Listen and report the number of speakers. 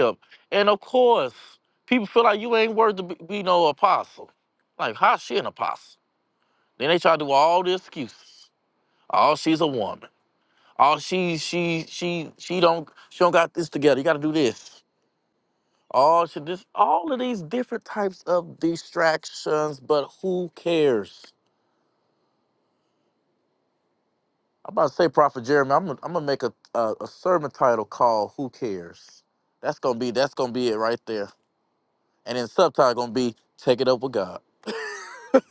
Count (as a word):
one